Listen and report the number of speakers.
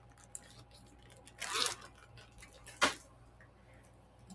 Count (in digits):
0